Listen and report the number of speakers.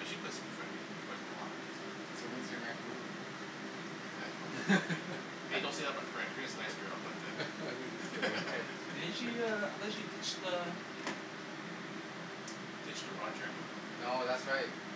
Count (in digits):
3